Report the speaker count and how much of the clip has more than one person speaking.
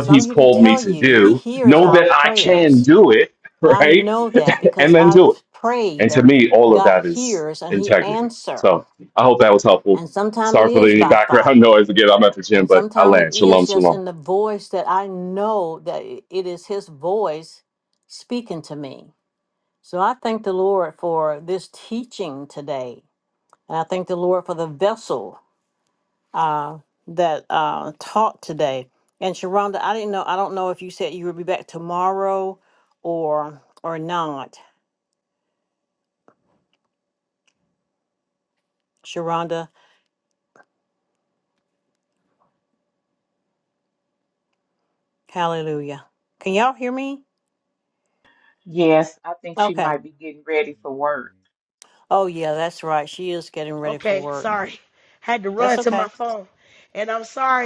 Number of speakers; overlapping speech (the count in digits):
4, about 16%